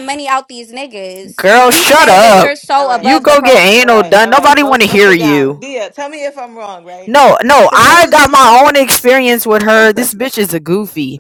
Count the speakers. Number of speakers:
three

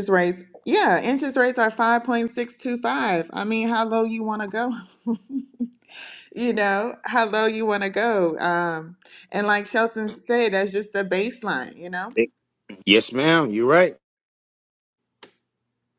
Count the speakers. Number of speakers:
two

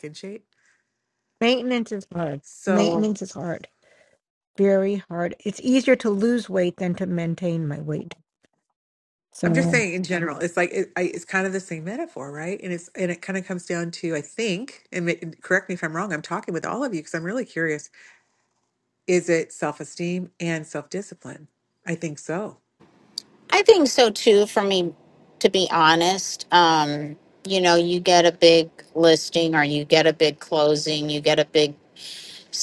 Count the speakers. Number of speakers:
three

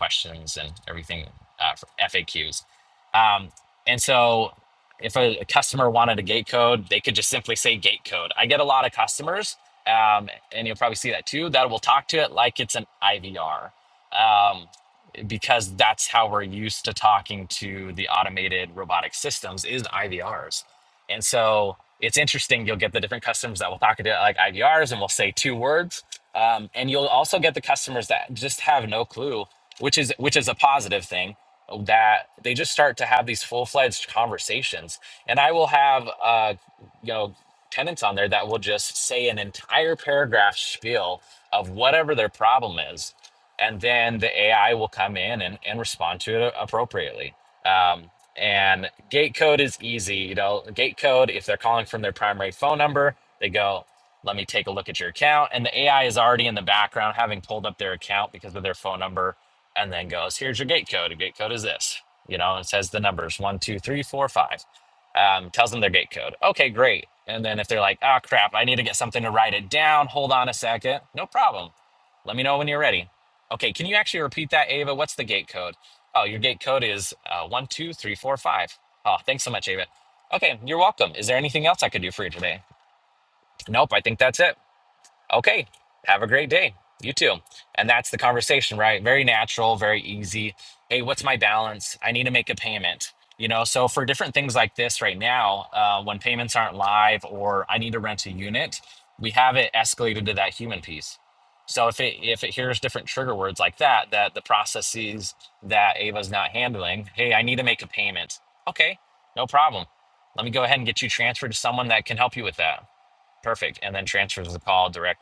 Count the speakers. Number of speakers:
one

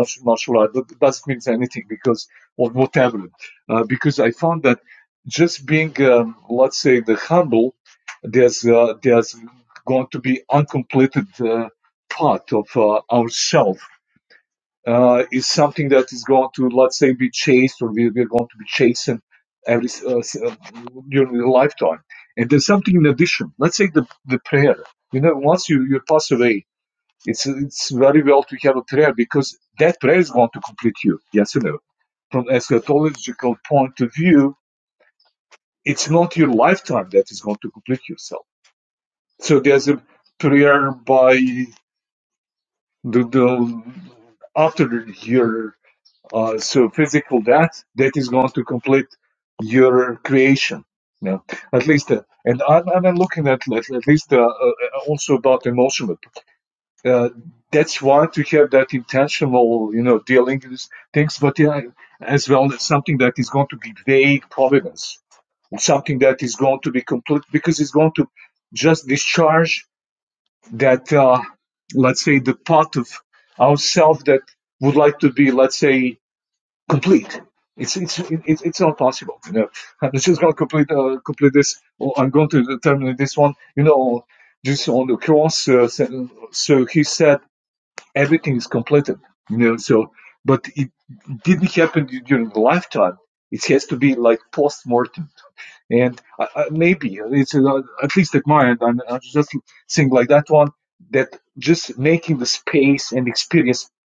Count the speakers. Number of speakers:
one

